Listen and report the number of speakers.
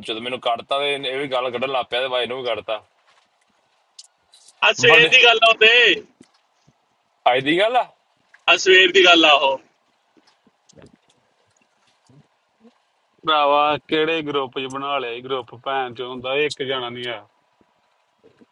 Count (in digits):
3